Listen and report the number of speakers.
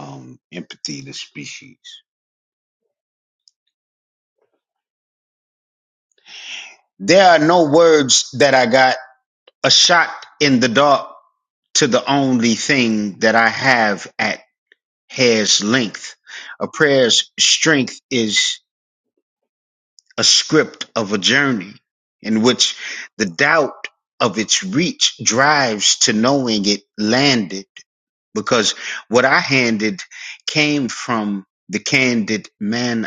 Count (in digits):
1